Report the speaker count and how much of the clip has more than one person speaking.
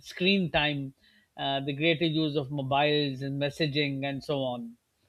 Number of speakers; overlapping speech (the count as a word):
one, no overlap